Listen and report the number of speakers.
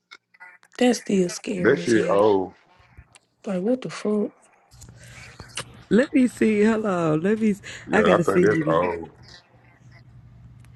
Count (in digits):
3